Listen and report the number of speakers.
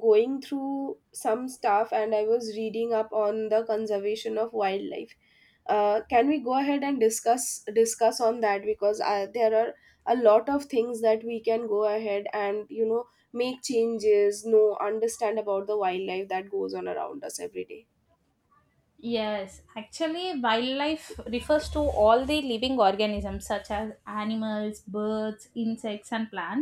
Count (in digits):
2